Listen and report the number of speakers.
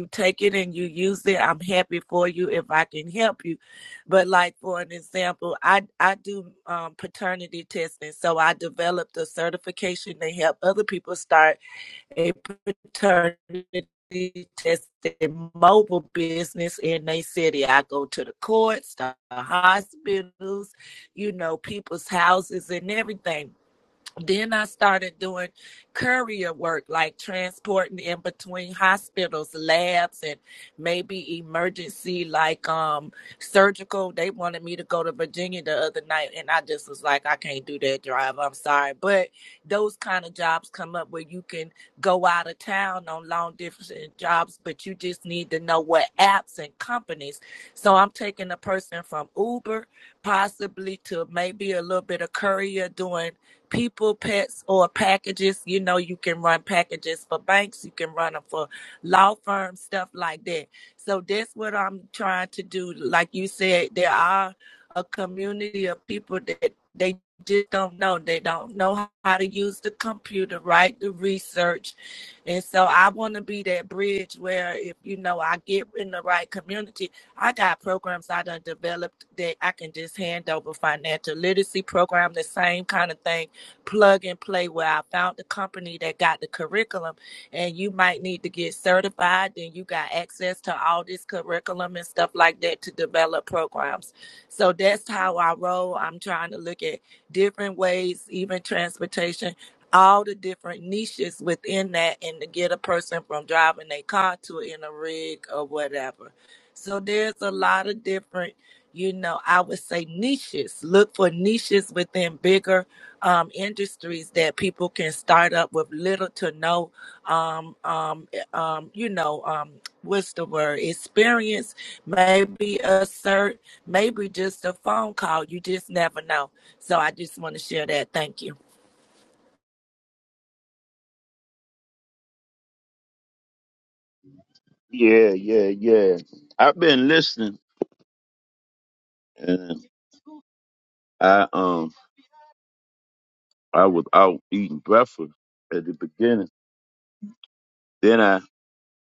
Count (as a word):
two